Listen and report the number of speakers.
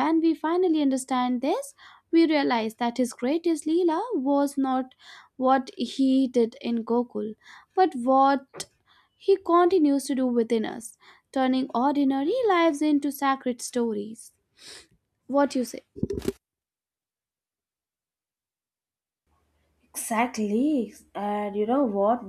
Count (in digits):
2